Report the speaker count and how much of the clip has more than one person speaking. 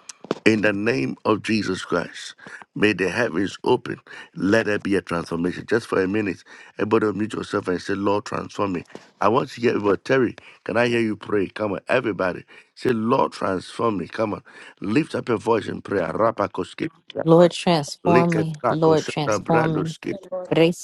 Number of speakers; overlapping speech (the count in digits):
2, about 9%